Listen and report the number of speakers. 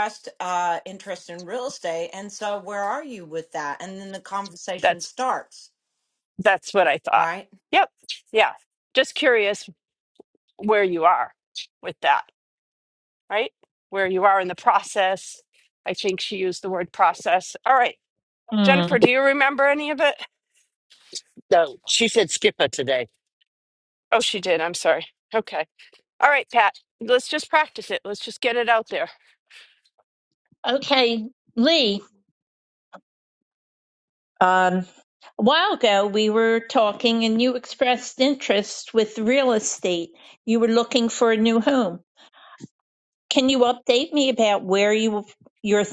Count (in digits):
4